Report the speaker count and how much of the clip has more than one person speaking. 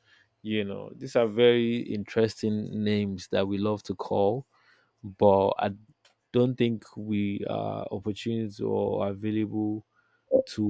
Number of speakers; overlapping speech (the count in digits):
1, no overlap